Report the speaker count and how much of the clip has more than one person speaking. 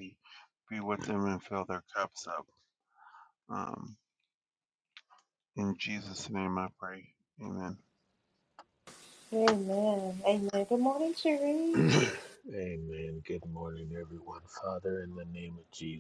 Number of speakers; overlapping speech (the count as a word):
three, about 1%